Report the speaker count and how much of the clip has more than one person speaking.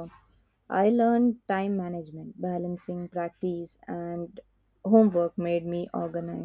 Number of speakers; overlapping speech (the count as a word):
one, no overlap